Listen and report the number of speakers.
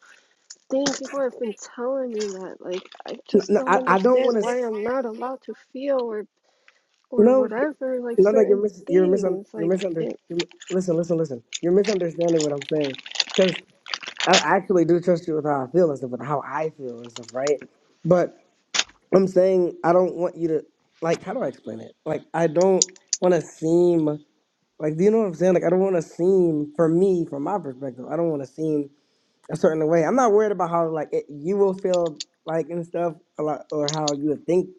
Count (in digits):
2